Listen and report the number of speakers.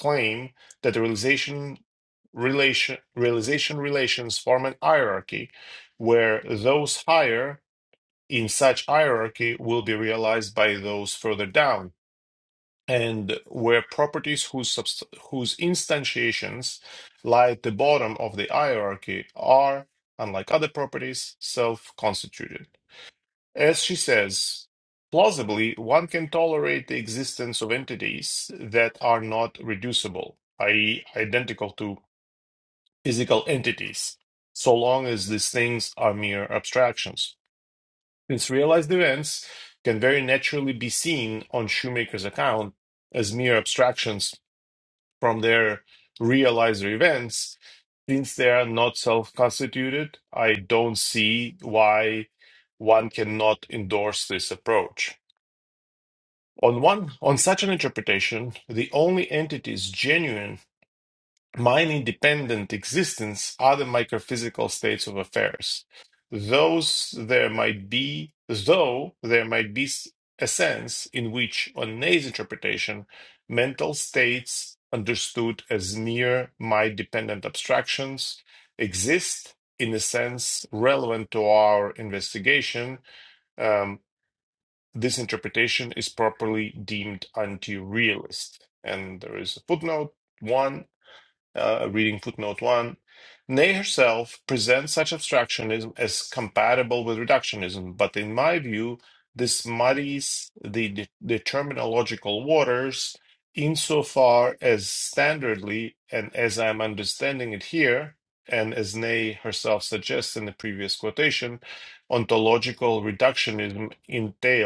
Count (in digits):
1